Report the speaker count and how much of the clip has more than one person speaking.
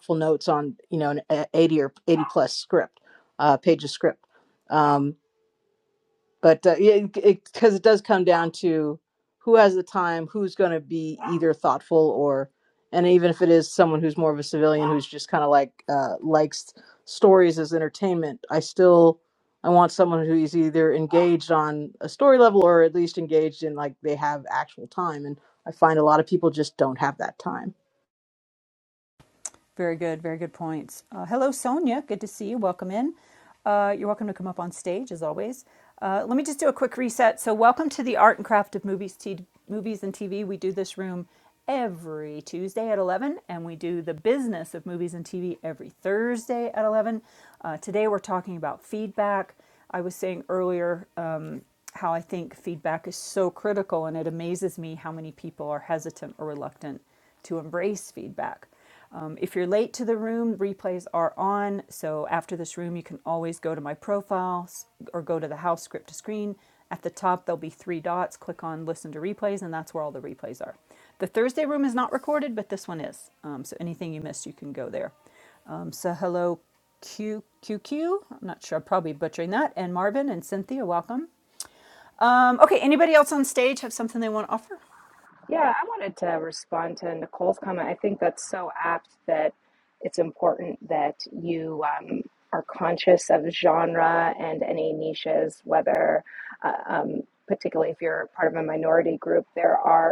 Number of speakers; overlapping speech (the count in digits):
3, no overlap